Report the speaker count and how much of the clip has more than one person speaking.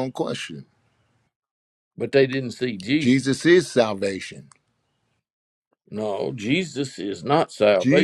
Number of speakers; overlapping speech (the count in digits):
2, about 4%